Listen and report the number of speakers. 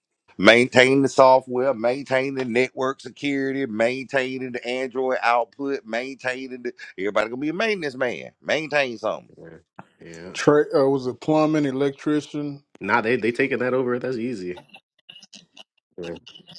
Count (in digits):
3